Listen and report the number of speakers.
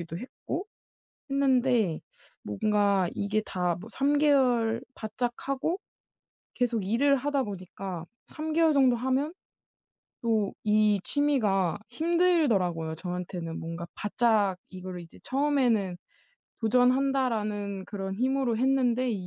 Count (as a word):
one